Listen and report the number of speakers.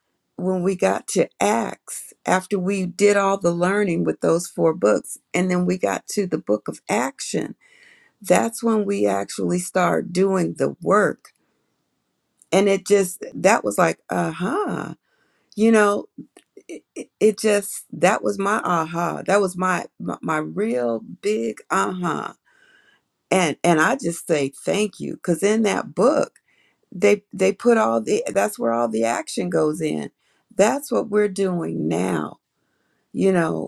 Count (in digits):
1